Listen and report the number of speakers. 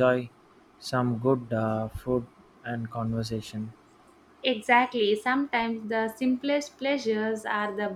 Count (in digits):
2